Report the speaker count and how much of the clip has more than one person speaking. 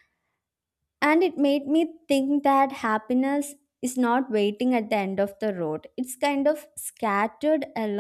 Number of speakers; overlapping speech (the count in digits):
1, no overlap